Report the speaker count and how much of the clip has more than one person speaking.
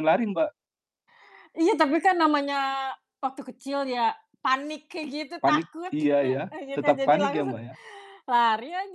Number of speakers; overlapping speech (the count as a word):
two, about 24%